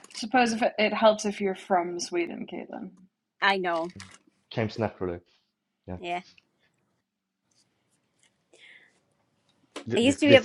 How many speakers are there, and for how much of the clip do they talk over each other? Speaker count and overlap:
3, about 5%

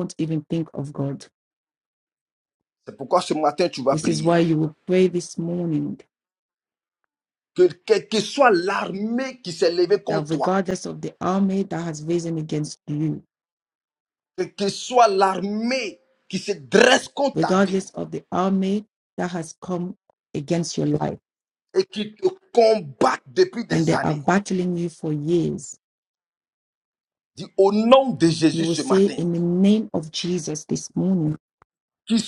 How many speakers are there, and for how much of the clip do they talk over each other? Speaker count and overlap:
2, about 8%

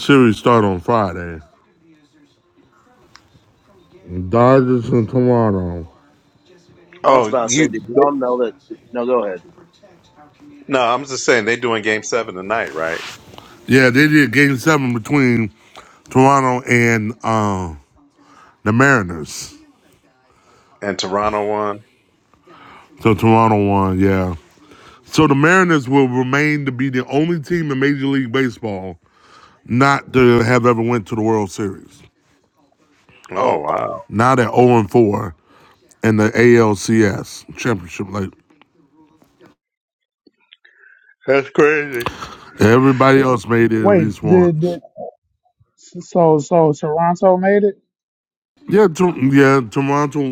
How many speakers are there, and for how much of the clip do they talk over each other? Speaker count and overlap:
4, about 4%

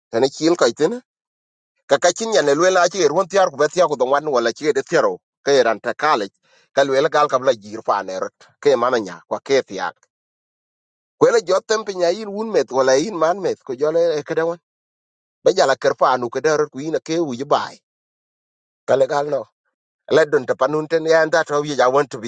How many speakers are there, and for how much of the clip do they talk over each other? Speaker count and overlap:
1, no overlap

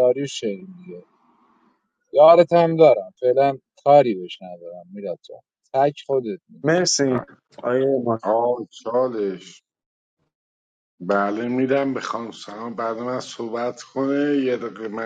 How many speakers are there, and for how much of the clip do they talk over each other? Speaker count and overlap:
3, no overlap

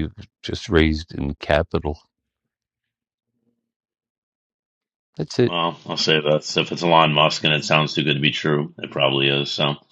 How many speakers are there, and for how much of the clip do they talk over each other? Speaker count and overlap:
2, under 1%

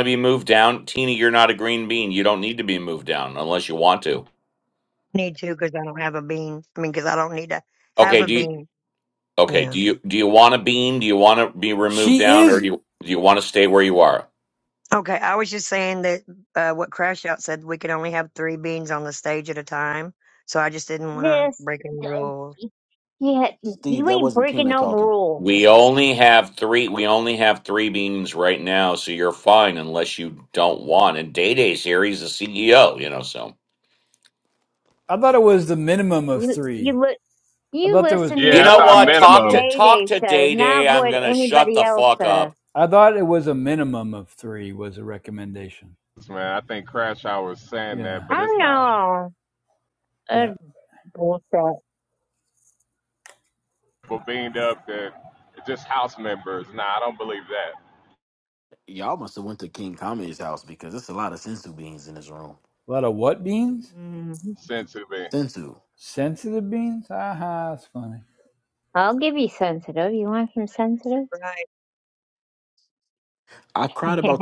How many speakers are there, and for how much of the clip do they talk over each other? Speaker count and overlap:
6, about 13%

